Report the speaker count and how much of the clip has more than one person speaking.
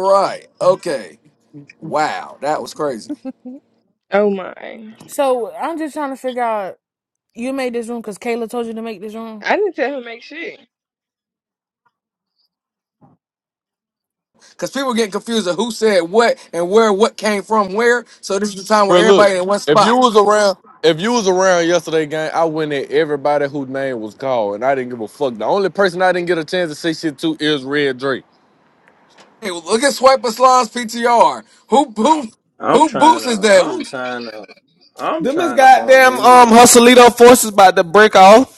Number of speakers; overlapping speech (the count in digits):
6, about 8%